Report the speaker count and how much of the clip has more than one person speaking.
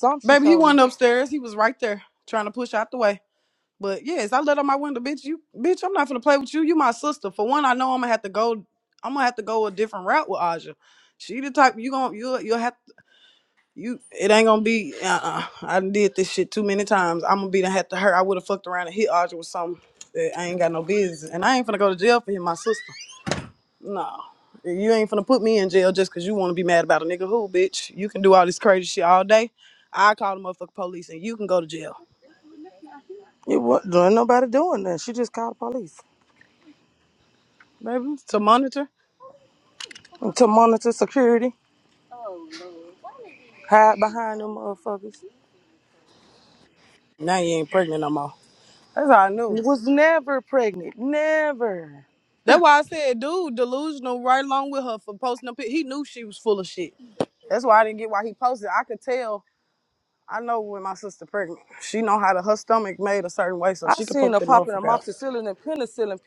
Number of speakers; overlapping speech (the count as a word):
two, about 3%